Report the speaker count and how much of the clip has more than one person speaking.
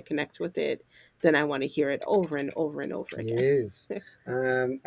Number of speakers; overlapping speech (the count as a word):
two, about 7%